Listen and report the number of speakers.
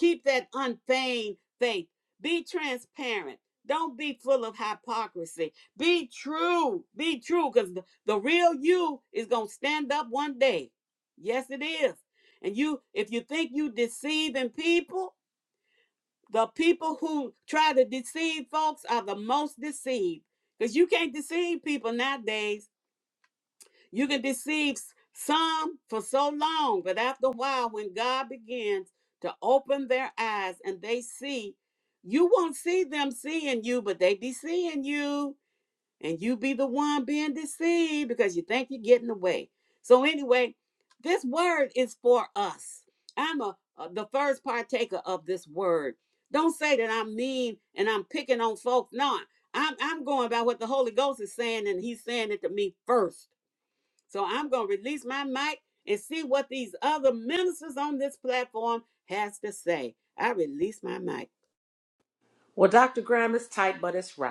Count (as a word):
two